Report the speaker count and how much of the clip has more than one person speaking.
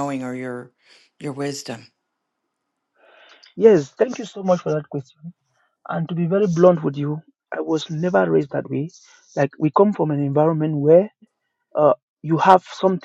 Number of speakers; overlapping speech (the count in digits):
2, no overlap